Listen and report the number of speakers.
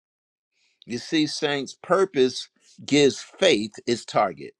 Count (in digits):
1